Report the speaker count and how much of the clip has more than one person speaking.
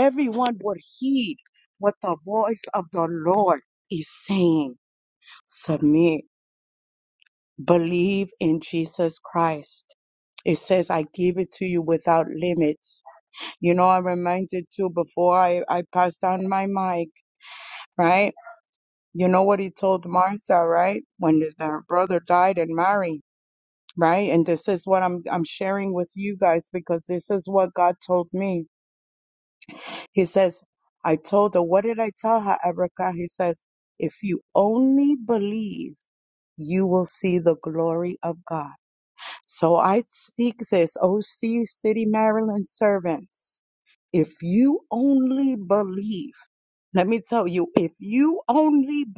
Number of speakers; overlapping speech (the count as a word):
one, no overlap